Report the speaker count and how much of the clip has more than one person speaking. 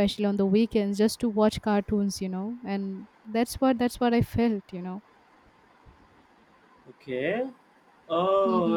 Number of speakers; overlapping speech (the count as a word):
two, about 4%